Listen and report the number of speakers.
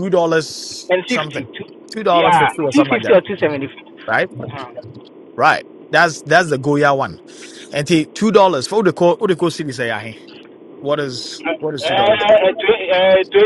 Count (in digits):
3